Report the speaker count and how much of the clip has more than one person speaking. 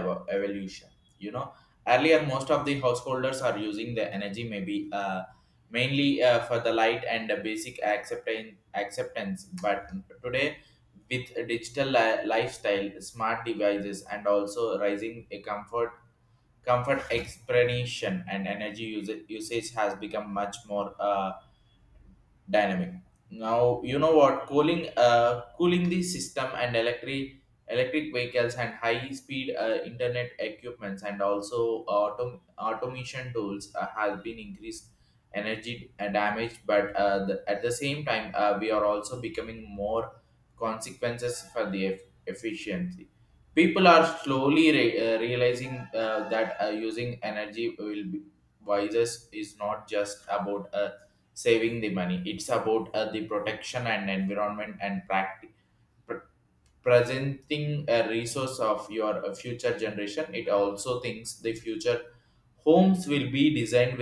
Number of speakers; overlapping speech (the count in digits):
1, no overlap